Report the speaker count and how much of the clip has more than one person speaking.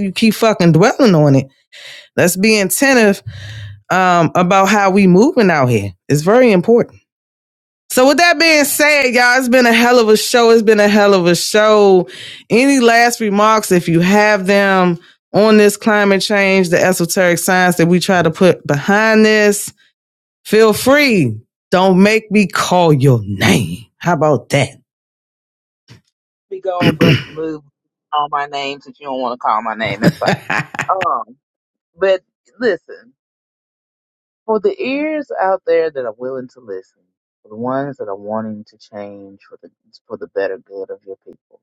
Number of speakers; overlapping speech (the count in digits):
2, no overlap